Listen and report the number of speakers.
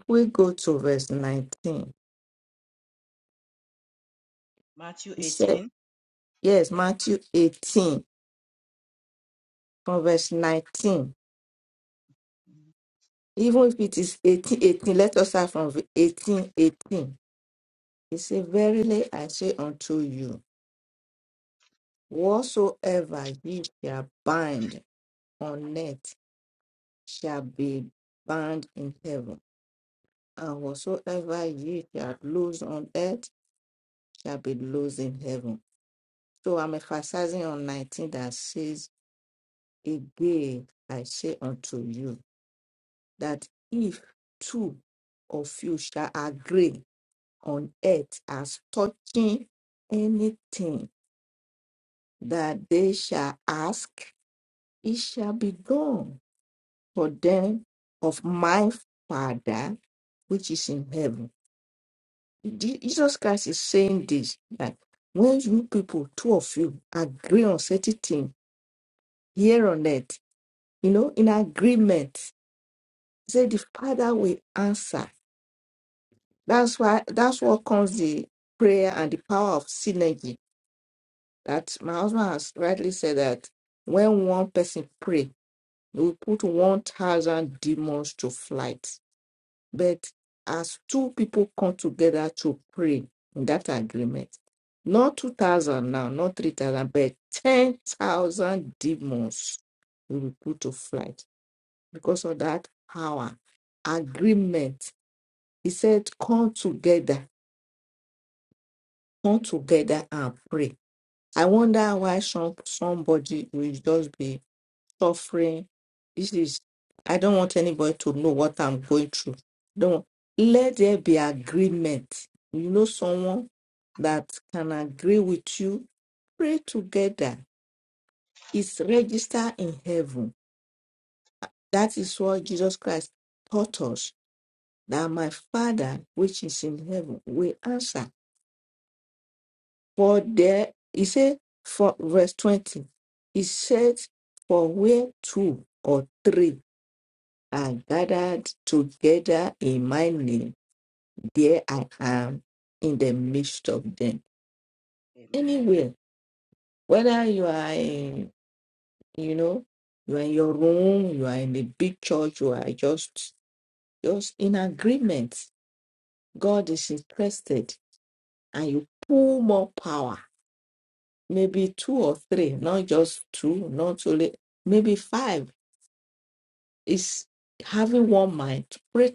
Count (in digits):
2